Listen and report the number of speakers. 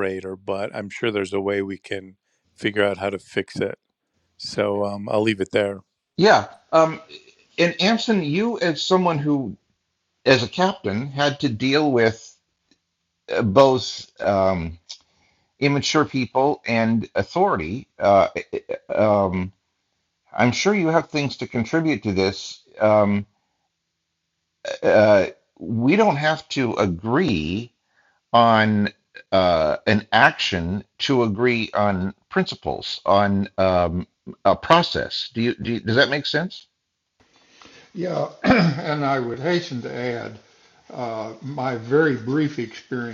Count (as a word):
three